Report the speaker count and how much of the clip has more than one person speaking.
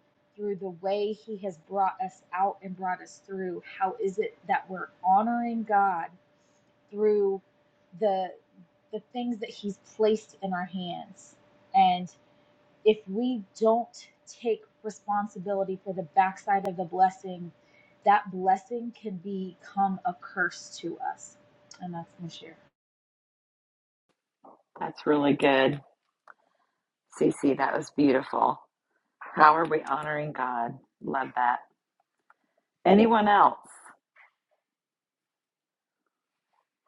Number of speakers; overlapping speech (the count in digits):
2, no overlap